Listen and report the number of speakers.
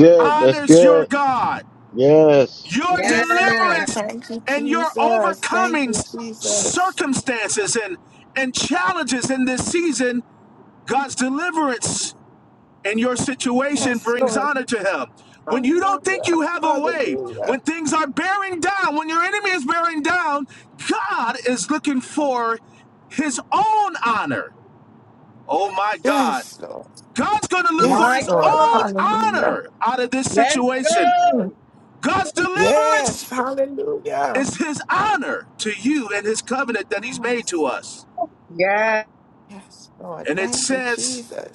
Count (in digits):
4